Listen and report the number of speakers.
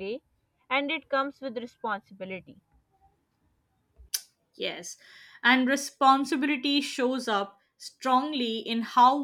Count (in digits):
2